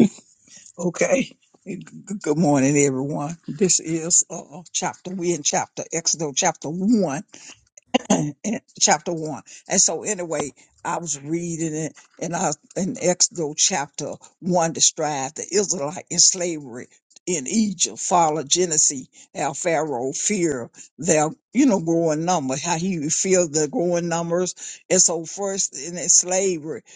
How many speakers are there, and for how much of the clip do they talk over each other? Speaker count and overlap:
1, no overlap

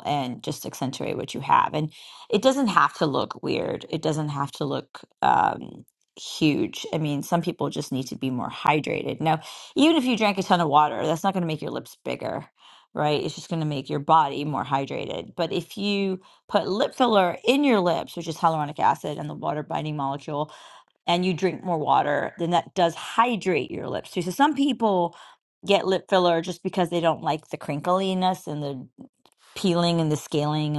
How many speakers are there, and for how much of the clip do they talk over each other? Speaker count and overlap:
1, no overlap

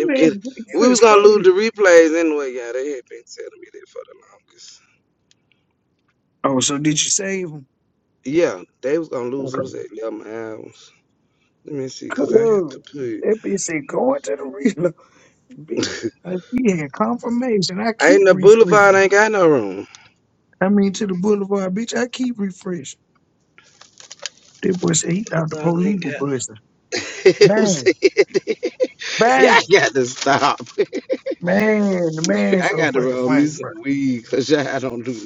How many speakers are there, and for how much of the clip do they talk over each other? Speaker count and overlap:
2, about 17%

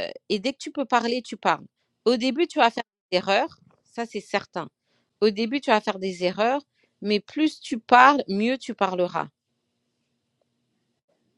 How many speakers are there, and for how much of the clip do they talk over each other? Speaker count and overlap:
1, no overlap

